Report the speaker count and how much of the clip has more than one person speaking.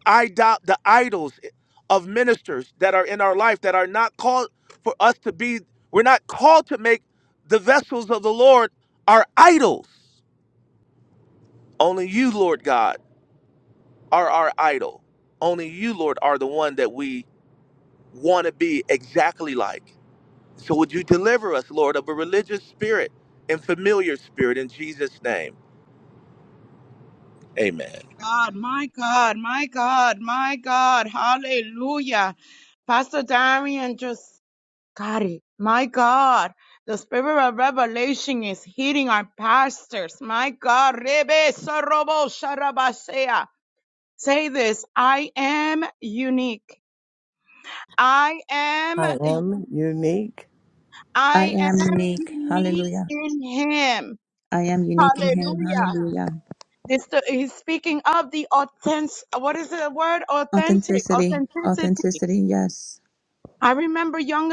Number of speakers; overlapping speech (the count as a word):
four, about 6%